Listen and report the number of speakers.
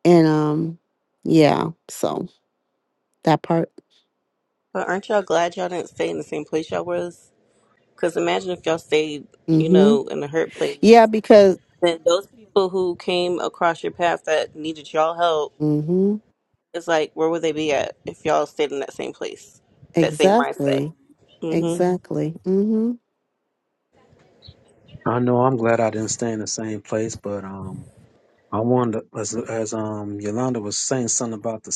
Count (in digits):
3